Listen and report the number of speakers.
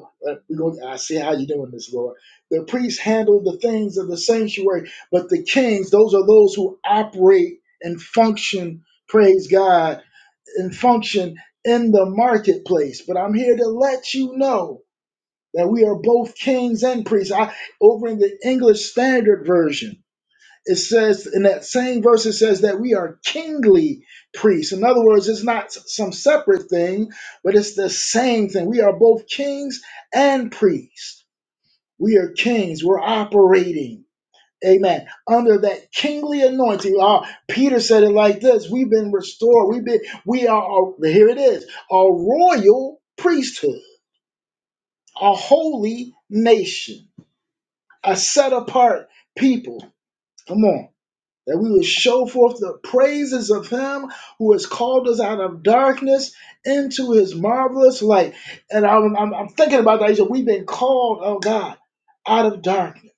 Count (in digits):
1